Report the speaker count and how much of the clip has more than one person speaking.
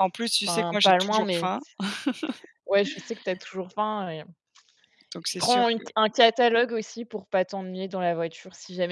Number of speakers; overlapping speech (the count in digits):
2, about 16%